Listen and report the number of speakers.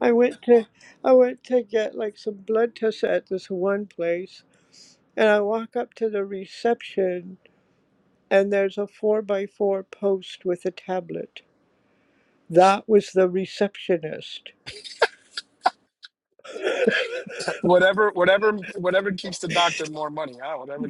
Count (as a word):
two